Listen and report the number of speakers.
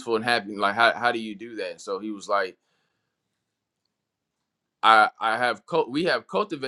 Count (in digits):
1